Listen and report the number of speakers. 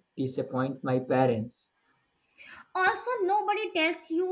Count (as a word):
two